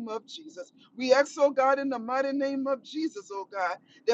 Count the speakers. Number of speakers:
1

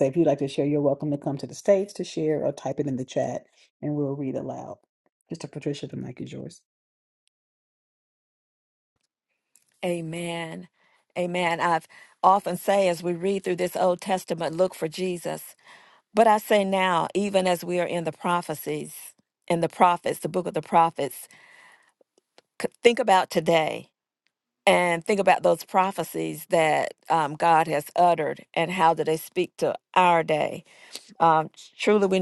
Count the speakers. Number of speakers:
2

